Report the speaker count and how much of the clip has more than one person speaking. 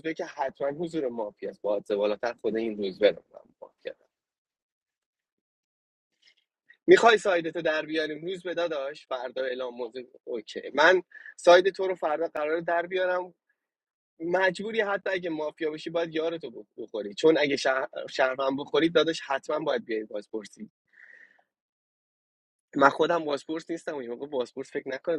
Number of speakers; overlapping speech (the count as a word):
one, no overlap